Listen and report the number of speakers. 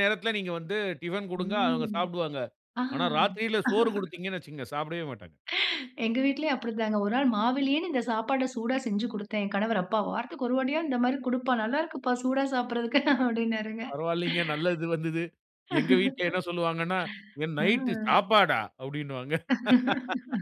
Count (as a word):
two